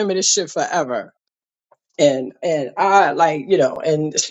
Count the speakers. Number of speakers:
1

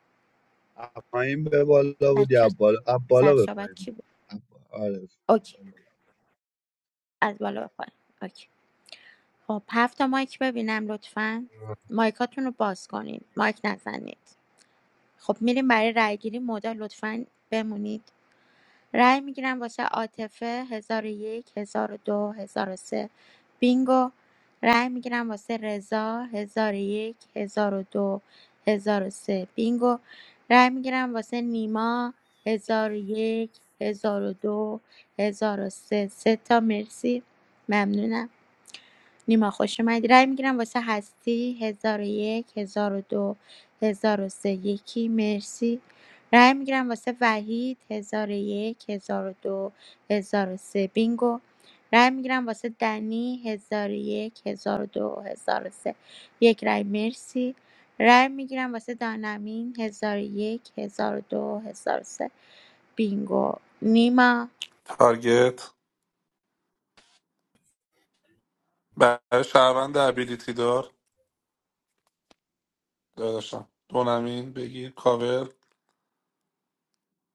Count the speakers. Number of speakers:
3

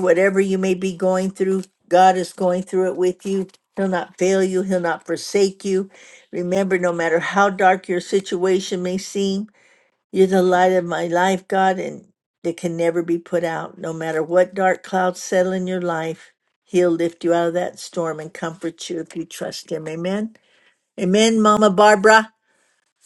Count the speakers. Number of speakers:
1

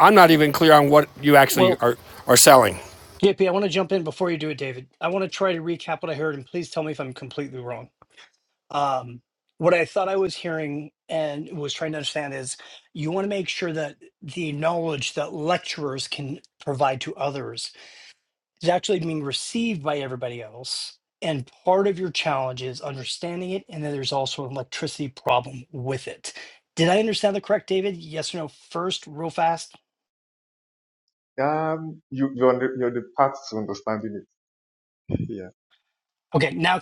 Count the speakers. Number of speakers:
3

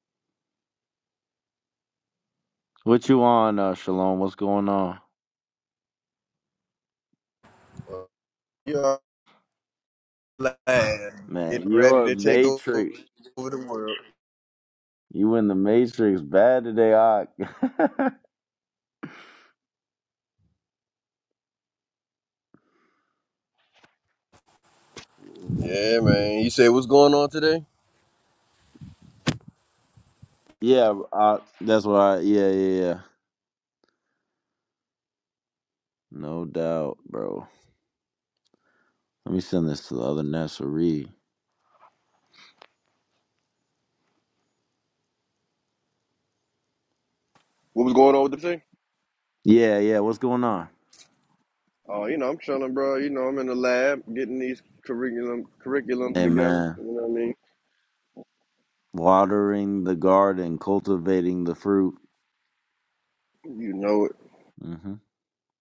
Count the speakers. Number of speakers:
2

